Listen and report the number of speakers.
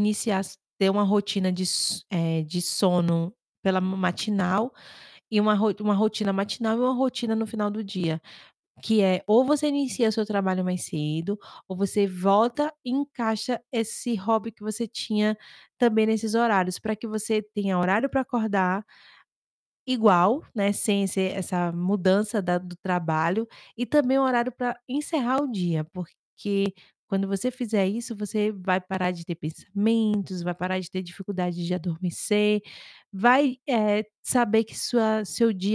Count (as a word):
one